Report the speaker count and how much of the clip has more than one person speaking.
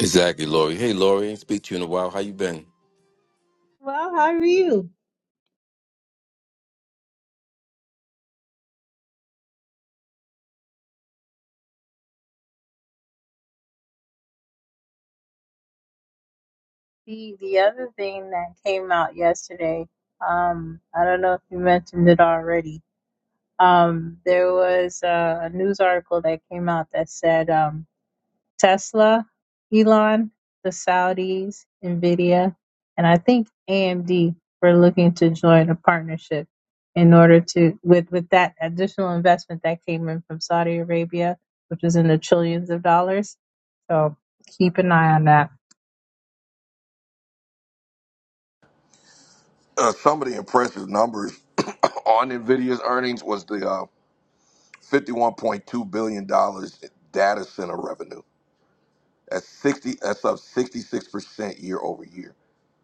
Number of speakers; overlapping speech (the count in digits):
3, no overlap